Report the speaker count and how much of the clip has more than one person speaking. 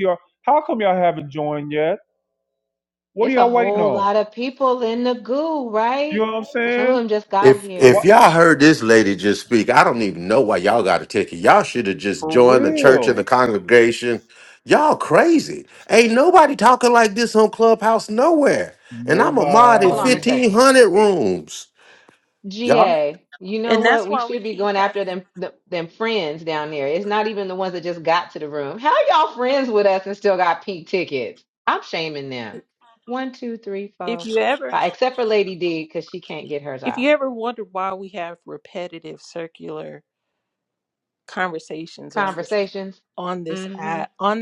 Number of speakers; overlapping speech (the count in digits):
4, about 17%